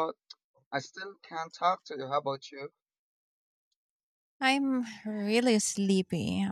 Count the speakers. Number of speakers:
2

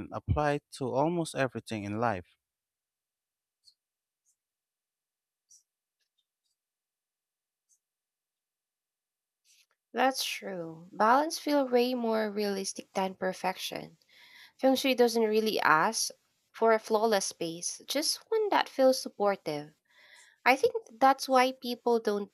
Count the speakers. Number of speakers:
2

